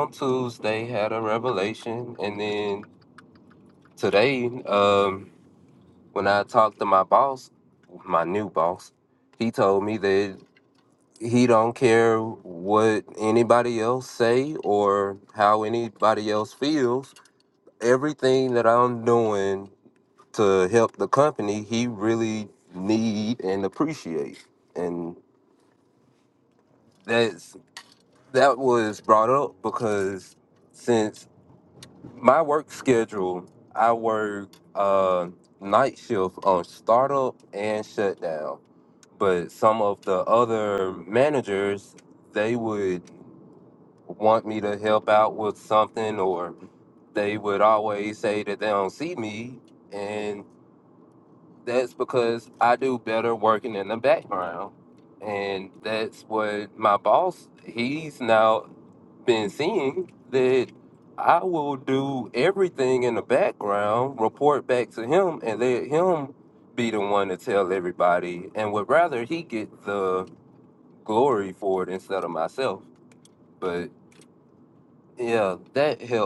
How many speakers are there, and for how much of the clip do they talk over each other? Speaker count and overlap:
one, no overlap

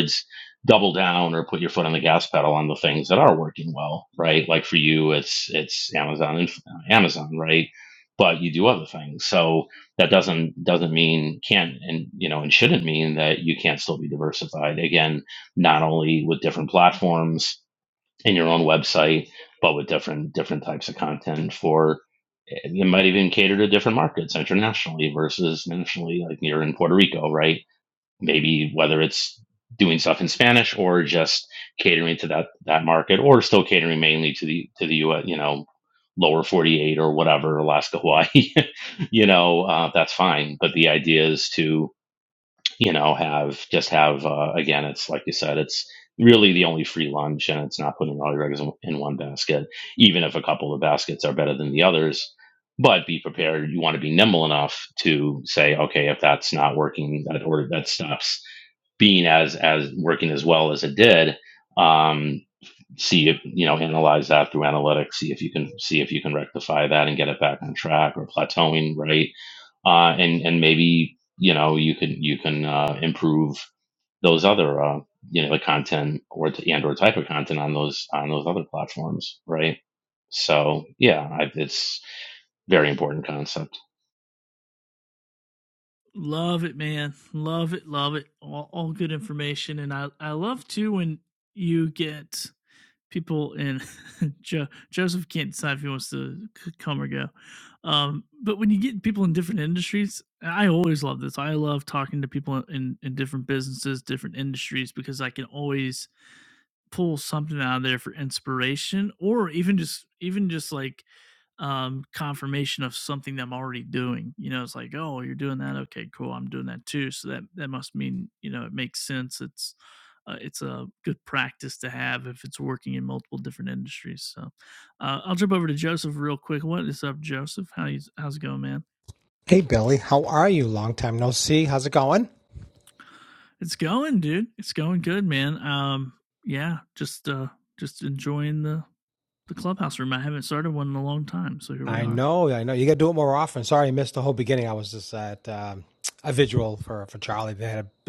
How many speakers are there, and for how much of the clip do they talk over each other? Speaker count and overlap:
three, under 1%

